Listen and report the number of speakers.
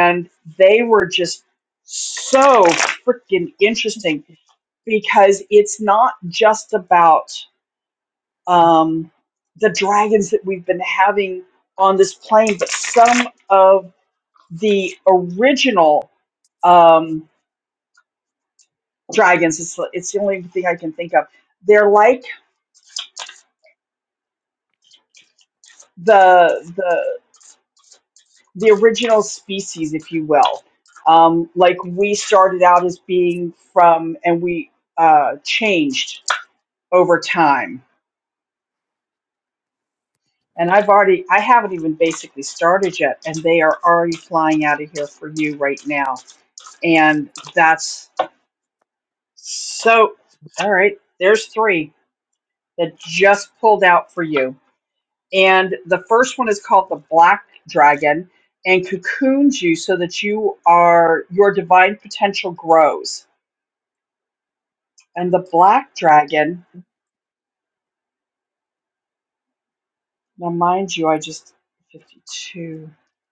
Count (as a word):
one